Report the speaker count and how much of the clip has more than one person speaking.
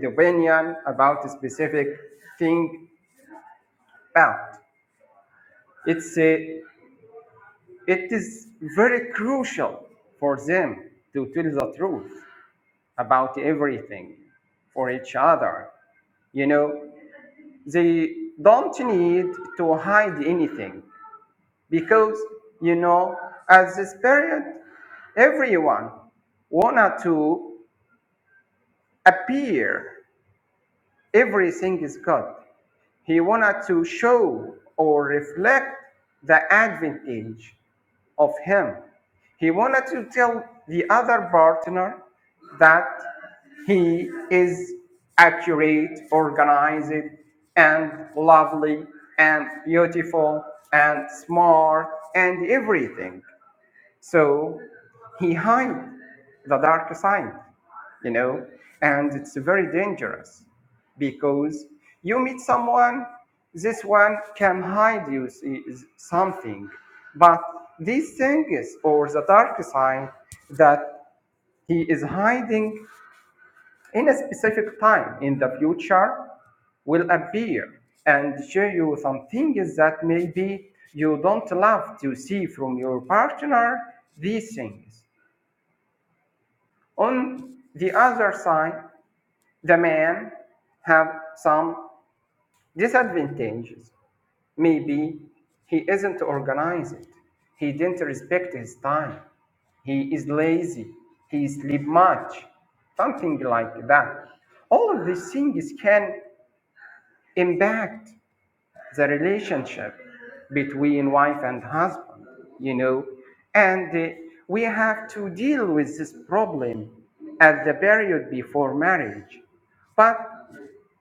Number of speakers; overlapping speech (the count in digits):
1, no overlap